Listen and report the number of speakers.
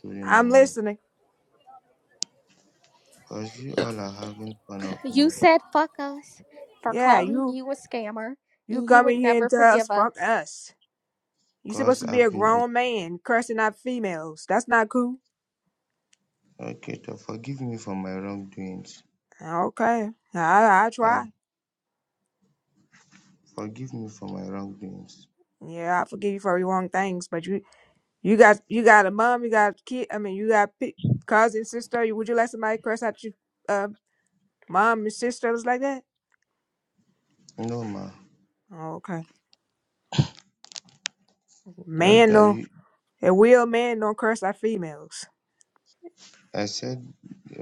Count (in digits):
3